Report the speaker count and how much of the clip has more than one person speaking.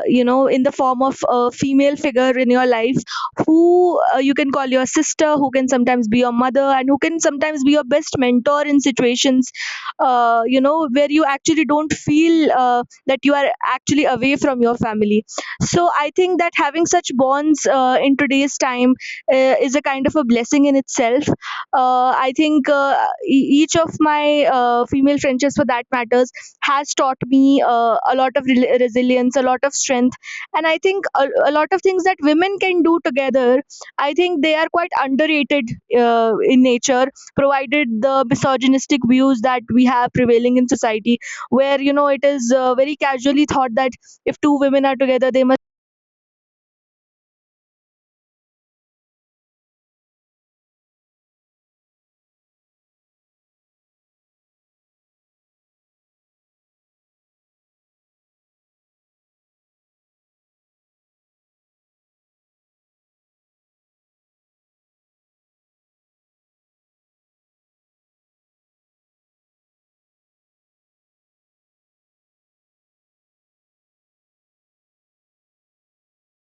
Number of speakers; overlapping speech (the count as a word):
one, no overlap